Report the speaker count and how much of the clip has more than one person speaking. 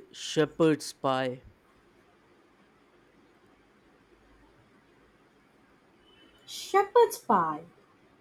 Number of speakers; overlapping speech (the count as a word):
two, no overlap